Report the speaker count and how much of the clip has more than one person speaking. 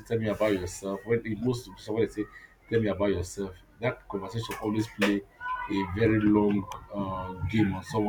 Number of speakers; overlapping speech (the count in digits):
1, no overlap